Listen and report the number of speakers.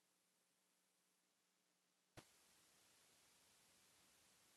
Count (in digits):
0